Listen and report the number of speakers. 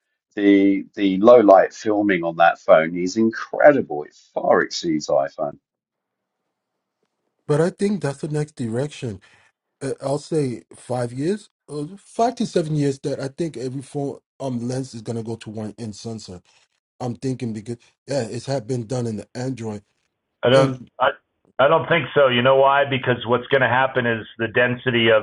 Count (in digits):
3